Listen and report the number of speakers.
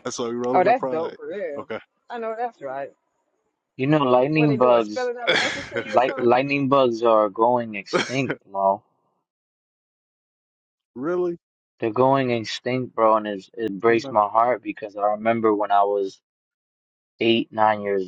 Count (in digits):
3